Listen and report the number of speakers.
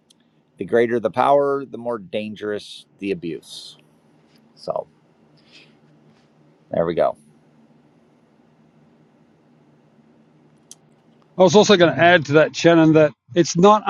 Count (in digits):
2